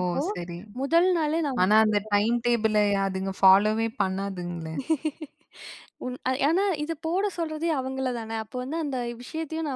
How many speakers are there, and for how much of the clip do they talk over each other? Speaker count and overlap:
two, about 4%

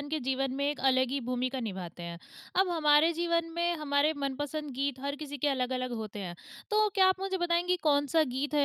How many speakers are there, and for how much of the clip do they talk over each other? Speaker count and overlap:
one, no overlap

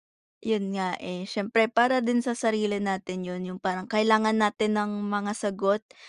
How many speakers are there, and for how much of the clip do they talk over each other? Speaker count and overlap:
one, no overlap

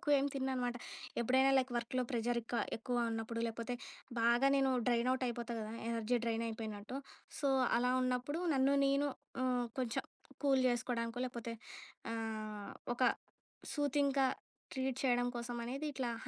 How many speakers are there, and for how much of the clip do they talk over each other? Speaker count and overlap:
one, no overlap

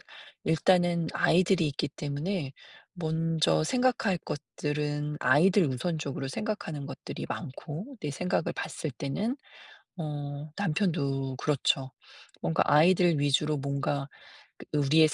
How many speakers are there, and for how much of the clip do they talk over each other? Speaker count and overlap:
one, no overlap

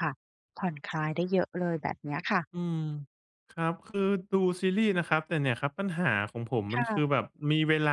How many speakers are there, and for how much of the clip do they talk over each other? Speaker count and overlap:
two, about 4%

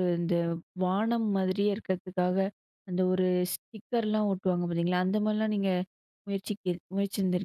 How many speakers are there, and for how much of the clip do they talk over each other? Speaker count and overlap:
one, no overlap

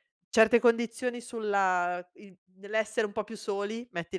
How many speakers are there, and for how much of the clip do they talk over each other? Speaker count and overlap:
one, no overlap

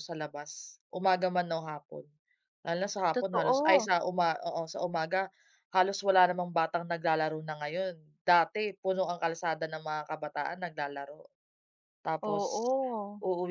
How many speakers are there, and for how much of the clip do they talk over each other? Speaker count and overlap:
two, about 7%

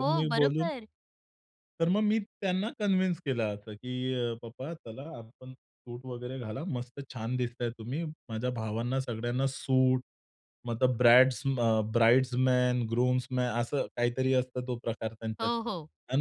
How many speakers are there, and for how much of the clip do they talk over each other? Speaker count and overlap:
two, about 5%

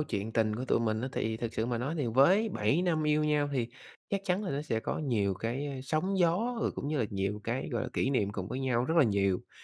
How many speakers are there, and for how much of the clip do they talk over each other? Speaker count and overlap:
one, no overlap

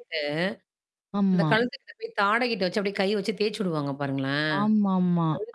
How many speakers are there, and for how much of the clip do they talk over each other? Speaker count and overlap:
two, about 9%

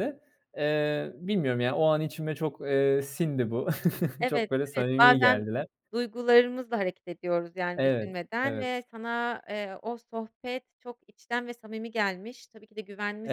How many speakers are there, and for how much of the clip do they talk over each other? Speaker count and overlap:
two, about 14%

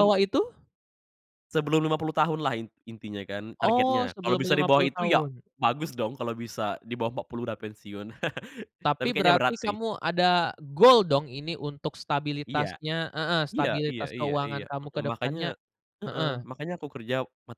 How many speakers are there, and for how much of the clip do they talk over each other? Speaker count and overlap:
two, about 29%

